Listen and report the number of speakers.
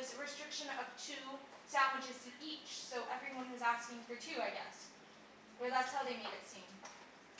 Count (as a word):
one